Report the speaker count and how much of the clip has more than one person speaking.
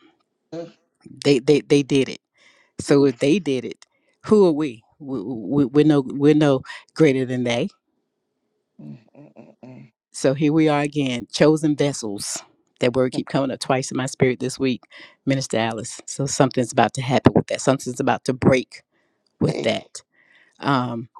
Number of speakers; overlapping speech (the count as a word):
two, about 2%